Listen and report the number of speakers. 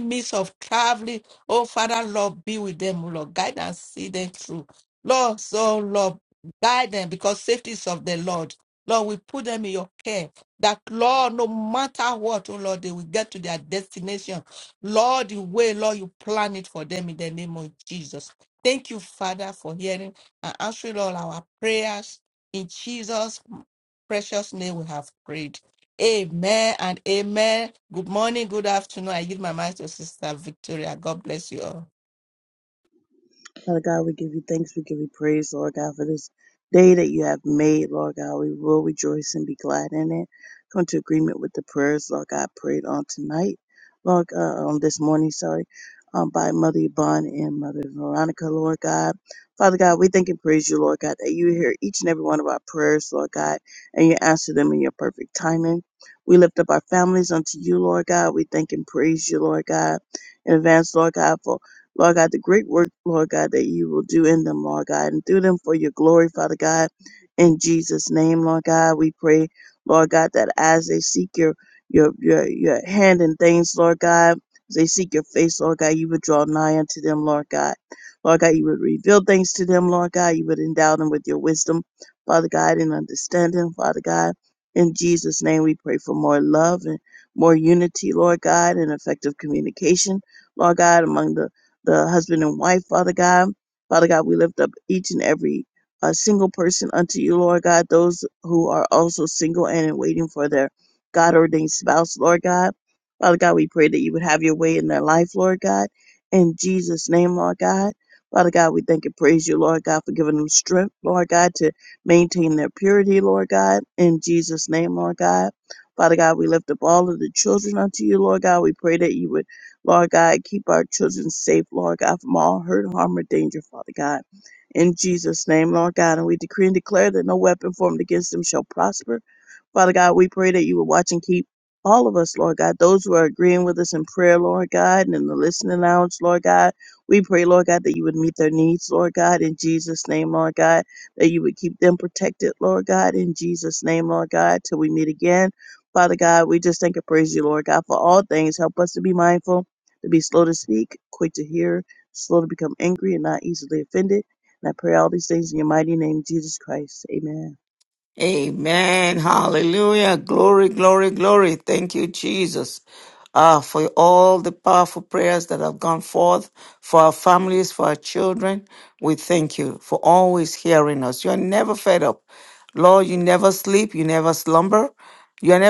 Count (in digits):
3